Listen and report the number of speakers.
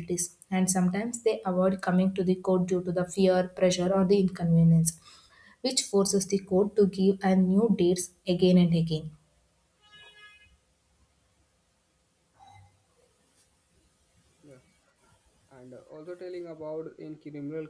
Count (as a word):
two